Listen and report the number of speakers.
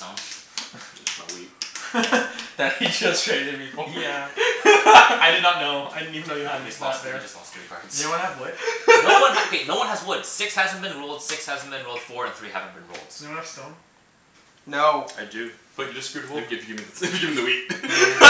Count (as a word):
four